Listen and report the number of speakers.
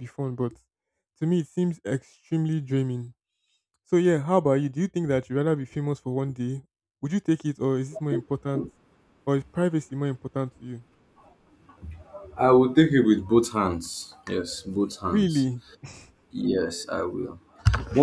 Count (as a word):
two